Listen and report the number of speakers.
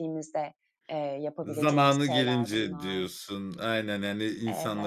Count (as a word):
two